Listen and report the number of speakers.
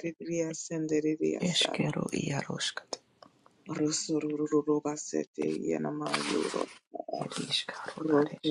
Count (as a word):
two